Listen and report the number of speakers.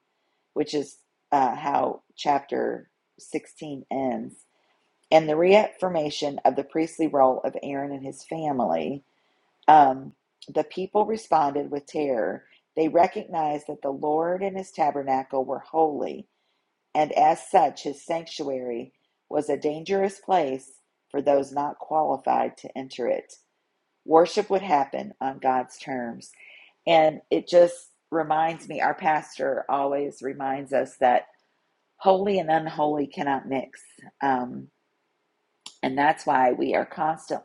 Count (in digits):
1